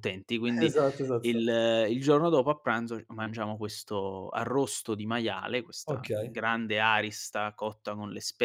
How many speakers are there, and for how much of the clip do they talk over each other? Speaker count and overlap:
2, about 10%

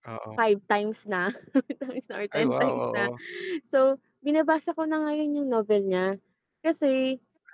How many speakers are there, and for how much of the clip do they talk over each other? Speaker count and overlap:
2, about 11%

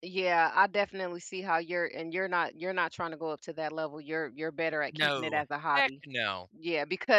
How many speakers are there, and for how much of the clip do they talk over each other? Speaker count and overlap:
2, about 14%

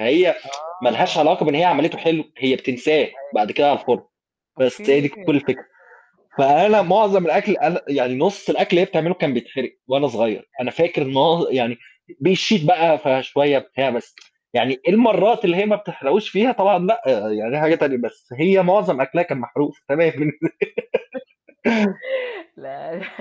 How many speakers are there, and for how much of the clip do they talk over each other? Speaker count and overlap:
2, about 6%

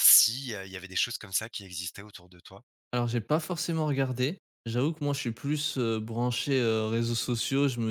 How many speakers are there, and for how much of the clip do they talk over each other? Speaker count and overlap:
2, no overlap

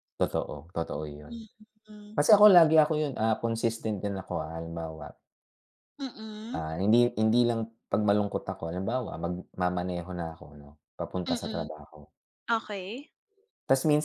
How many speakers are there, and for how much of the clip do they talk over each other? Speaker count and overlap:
2, about 4%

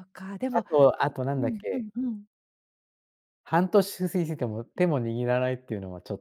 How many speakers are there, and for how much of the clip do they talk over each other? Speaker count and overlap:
2, about 10%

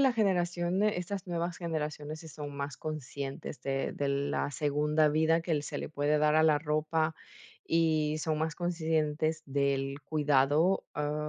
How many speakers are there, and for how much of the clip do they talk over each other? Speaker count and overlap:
1, no overlap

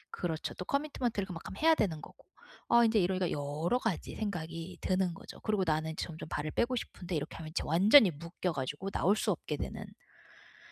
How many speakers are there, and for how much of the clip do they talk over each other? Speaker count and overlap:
1, no overlap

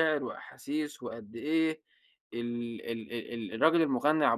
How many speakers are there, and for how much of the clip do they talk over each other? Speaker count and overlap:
1, no overlap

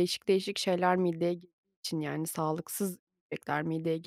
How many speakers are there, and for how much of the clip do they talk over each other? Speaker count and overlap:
1, no overlap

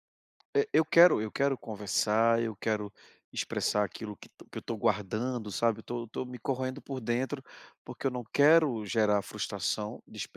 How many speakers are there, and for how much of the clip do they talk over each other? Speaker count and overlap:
1, no overlap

